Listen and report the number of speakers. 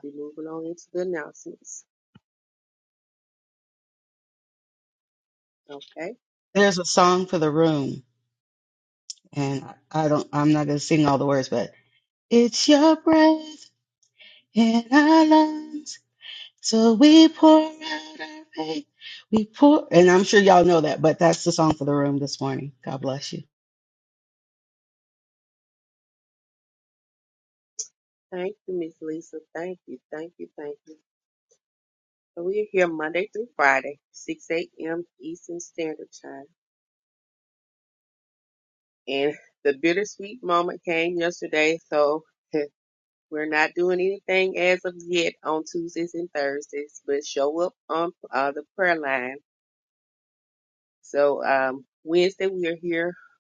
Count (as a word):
two